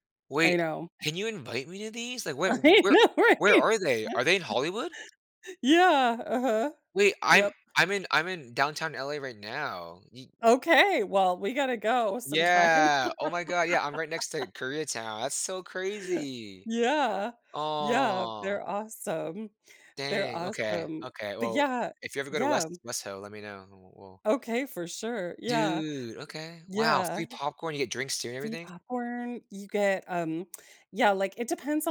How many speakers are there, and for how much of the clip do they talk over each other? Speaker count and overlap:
2, about 18%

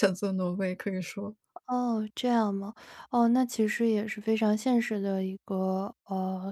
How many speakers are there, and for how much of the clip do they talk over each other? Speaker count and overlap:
2, no overlap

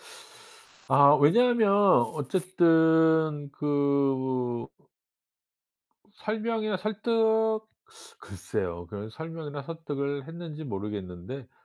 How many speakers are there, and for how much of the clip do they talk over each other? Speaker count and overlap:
1, no overlap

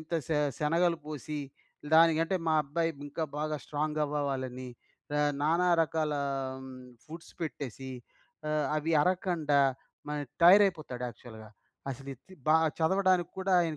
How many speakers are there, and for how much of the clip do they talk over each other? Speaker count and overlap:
1, no overlap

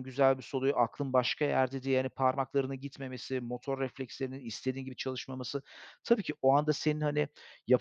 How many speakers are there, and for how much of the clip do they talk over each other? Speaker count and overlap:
1, no overlap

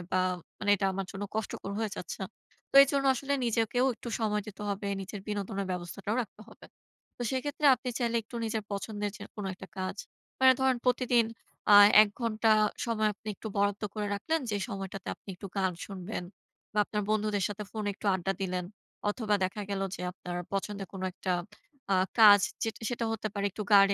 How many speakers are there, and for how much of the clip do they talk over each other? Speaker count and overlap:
1, no overlap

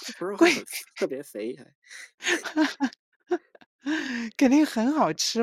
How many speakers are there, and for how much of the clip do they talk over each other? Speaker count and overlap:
2, about 3%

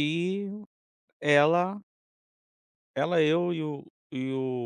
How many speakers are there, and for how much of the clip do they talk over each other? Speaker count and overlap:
1, no overlap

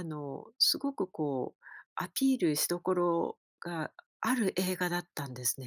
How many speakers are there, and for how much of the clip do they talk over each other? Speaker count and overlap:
1, no overlap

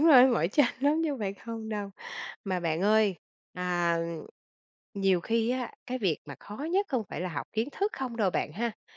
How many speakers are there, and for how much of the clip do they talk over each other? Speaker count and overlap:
1, no overlap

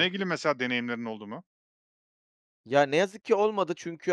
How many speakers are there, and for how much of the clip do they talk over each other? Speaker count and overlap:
2, about 1%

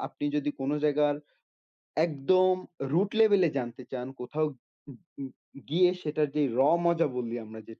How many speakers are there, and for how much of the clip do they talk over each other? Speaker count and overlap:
1, no overlap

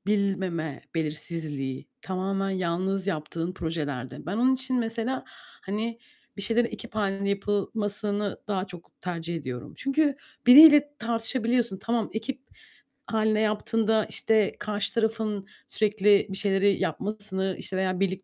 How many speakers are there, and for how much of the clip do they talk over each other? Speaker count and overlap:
1, no overlap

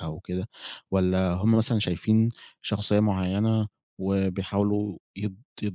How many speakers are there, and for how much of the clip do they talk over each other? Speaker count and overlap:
1, no overlap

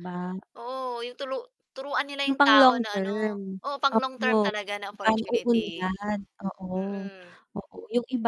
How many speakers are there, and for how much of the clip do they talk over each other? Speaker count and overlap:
2, about 32%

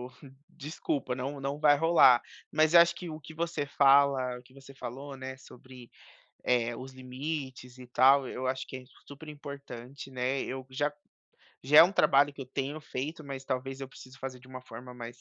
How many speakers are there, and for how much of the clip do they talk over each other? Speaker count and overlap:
1, no overlap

